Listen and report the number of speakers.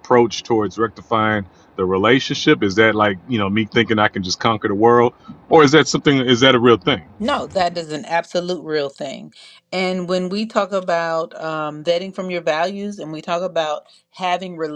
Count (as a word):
two